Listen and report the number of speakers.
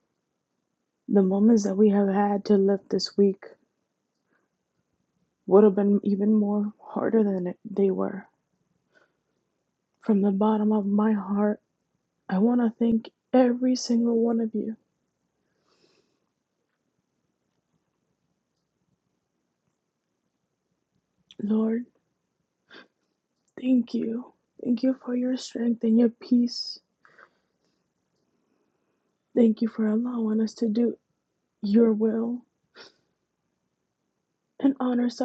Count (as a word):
one